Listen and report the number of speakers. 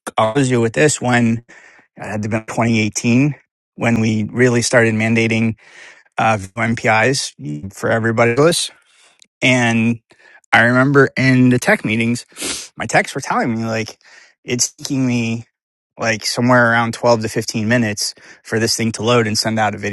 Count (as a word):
one